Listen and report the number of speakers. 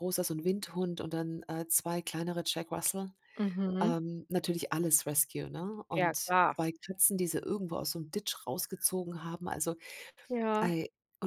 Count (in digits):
2